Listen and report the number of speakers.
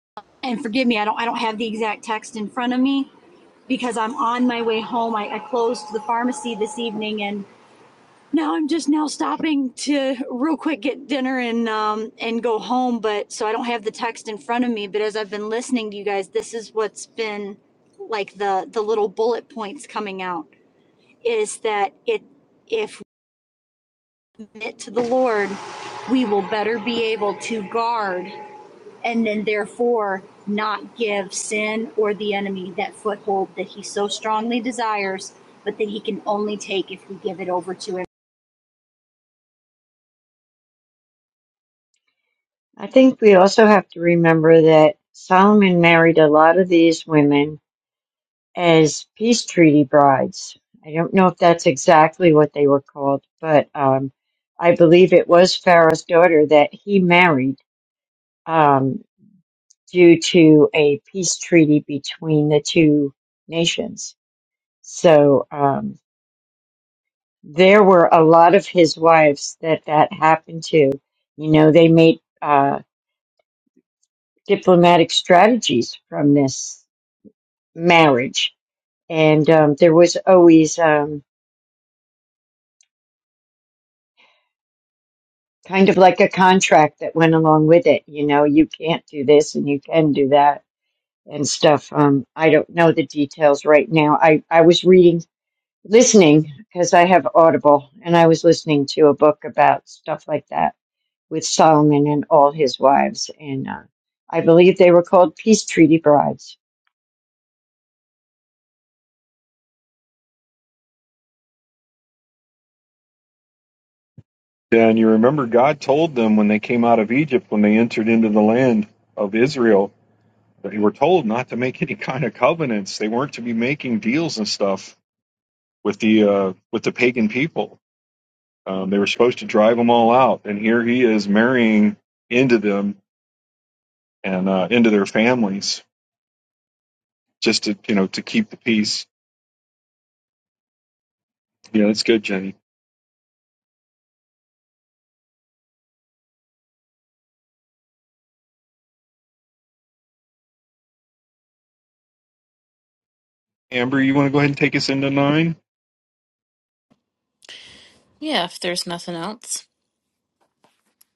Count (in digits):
4